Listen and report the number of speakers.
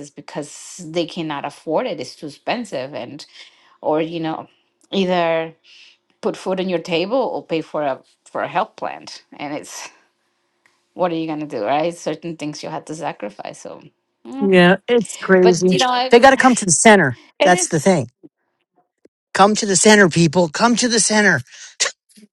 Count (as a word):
two